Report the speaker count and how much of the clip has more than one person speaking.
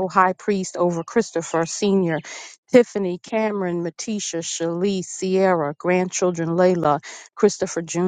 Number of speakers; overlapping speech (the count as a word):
one, no overlap